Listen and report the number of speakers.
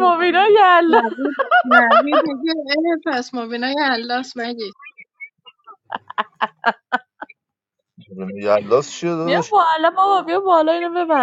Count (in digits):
3